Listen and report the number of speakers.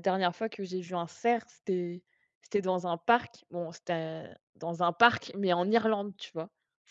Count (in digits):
1